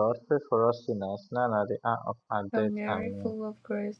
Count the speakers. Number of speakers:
2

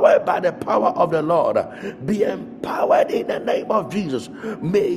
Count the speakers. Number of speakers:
1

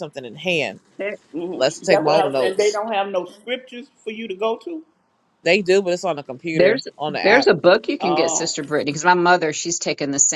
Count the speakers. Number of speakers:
3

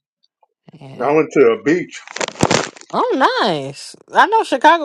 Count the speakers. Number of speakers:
2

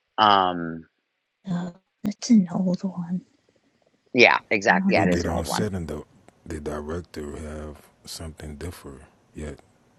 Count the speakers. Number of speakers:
3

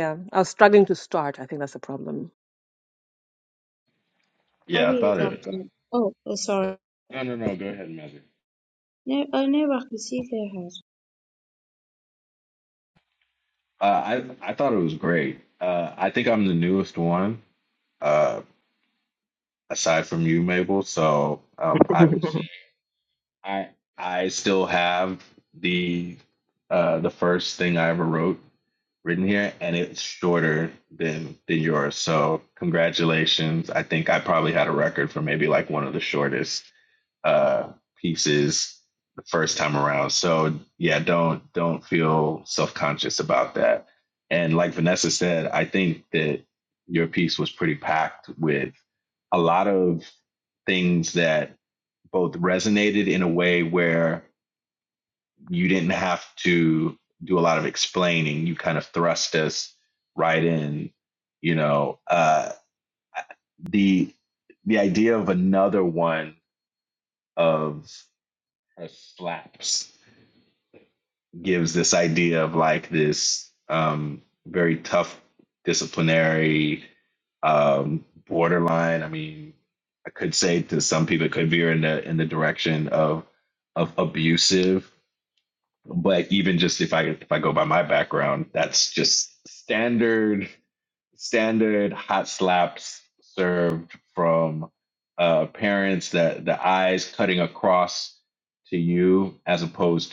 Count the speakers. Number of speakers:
3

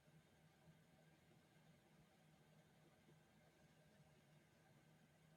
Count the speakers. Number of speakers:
0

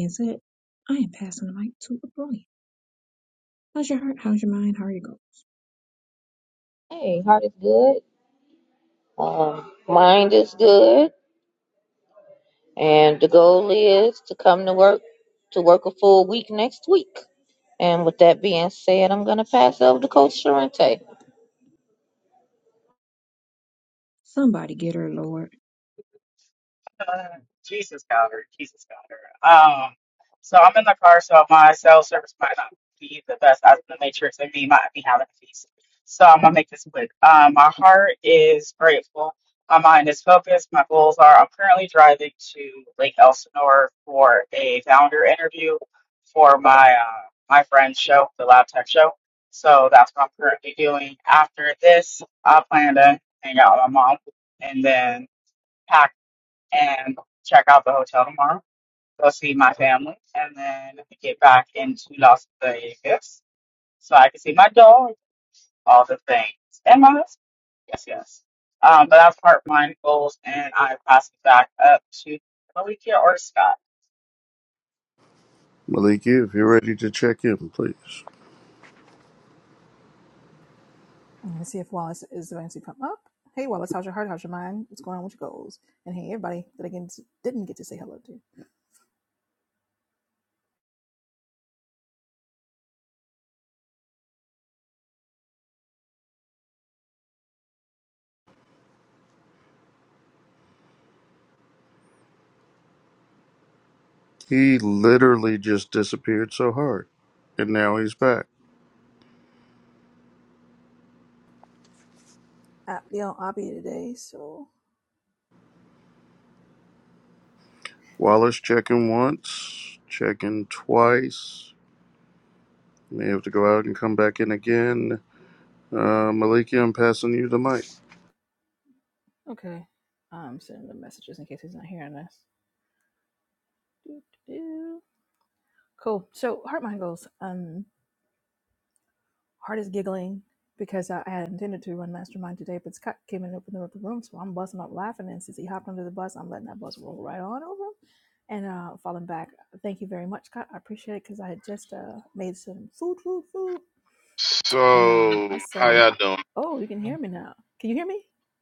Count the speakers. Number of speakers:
6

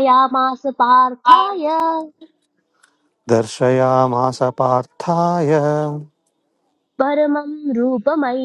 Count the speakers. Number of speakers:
2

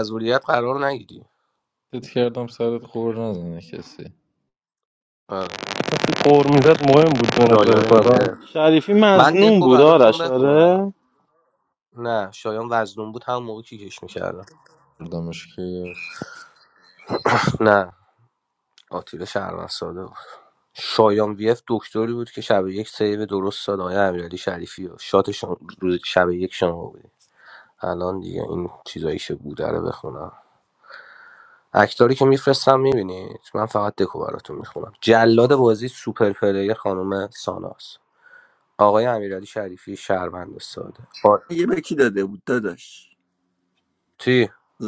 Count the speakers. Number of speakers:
5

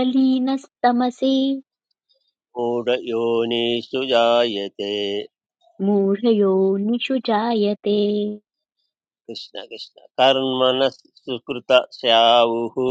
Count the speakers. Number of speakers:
2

